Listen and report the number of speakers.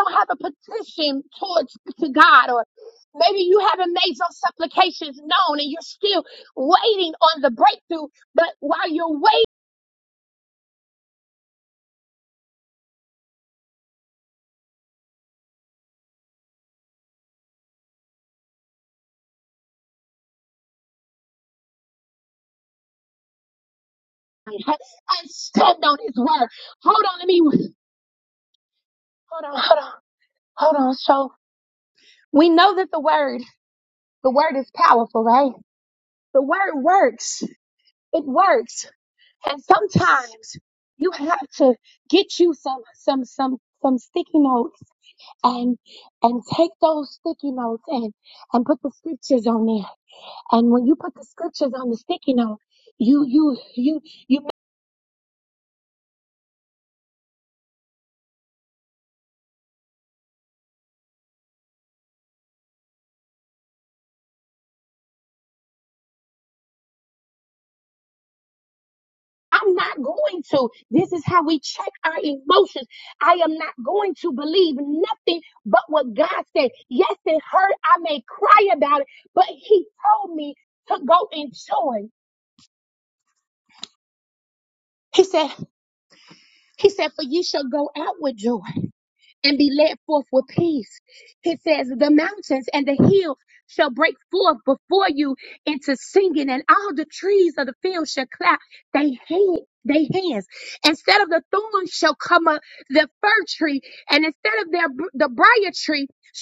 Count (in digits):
1